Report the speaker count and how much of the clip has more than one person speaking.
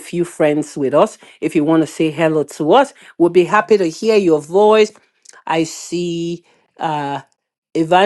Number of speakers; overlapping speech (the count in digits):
1, no overlap